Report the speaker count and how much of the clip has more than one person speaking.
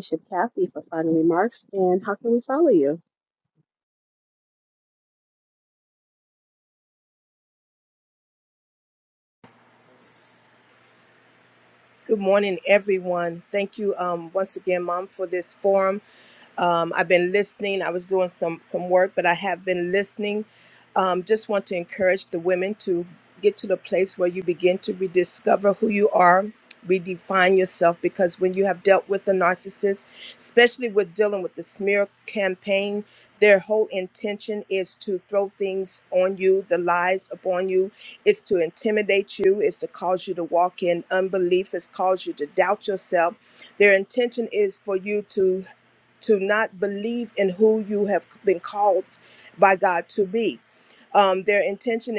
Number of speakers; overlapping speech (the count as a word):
two, no overlap